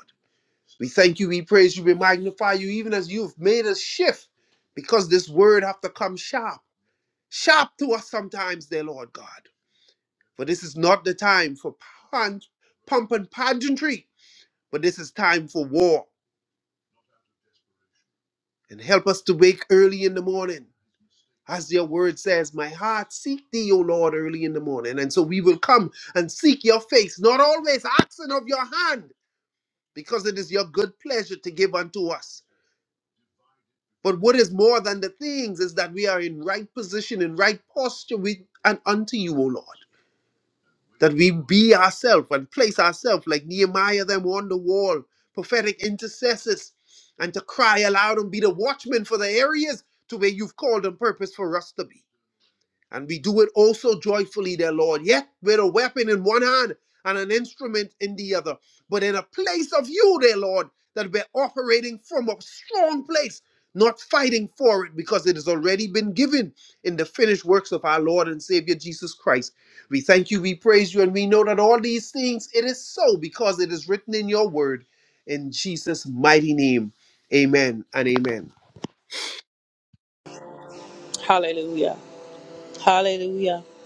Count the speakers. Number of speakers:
two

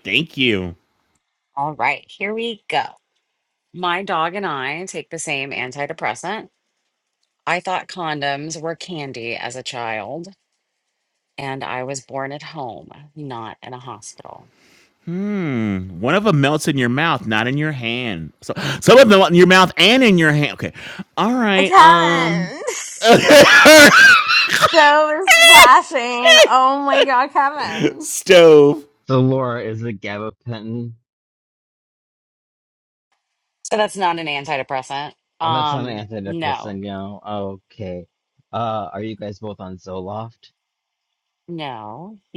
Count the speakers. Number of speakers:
four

